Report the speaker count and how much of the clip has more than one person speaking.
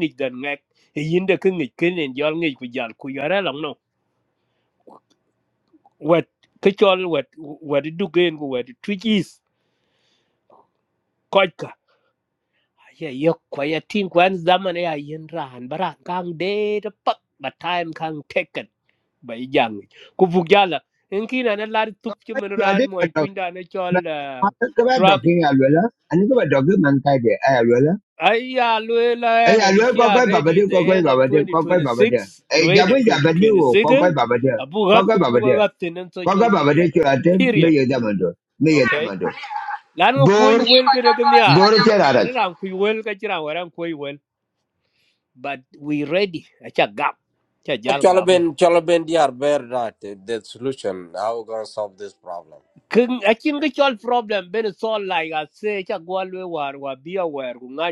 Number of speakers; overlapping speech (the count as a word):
three, about 15%